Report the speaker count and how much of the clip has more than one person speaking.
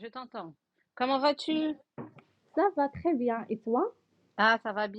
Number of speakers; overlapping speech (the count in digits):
2, no overlap